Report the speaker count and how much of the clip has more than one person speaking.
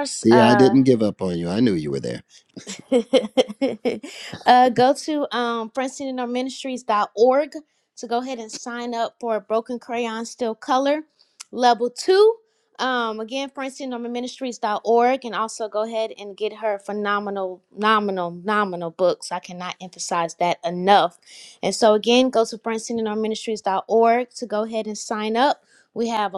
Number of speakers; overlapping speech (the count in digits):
2, about 2%